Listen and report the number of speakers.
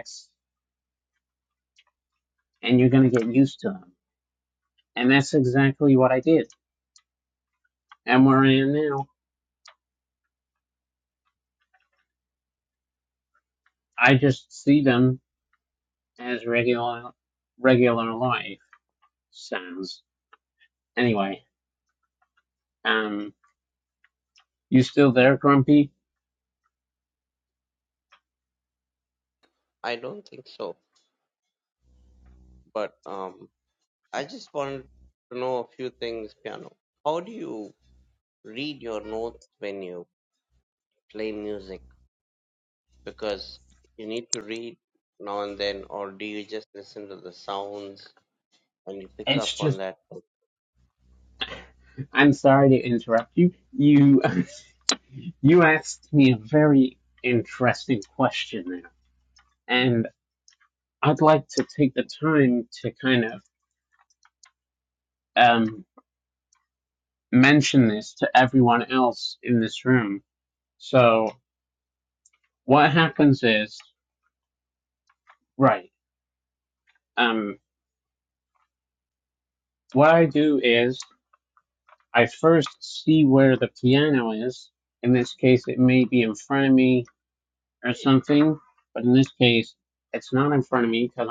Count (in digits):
2